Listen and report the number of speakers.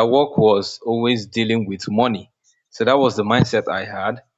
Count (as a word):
one